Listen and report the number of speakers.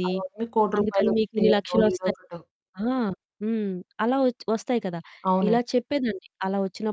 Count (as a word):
two